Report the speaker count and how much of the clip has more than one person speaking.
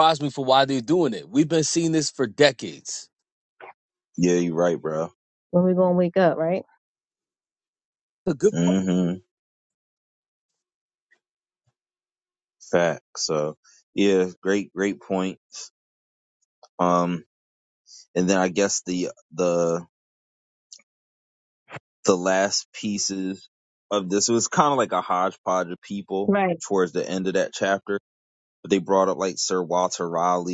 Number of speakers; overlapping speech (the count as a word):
three, under 1%